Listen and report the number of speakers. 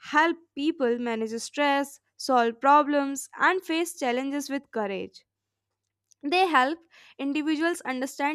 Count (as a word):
one